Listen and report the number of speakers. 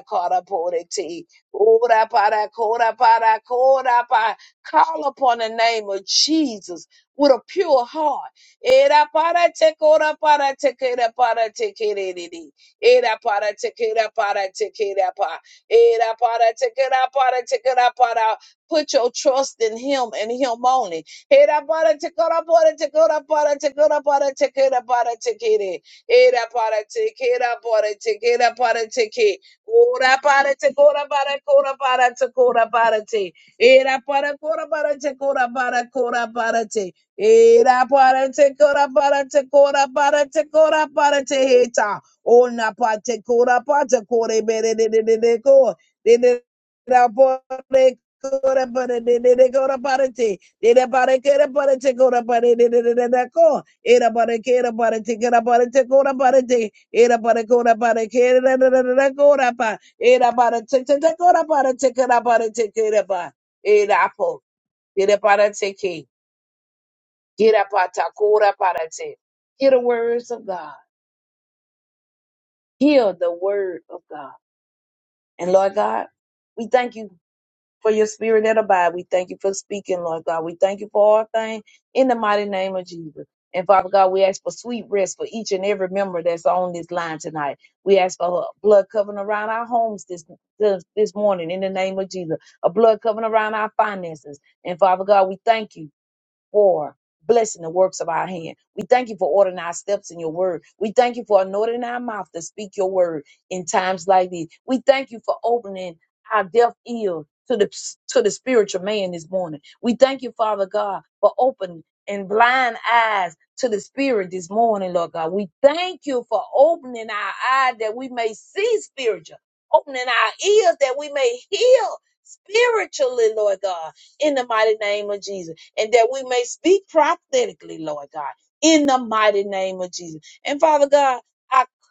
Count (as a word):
one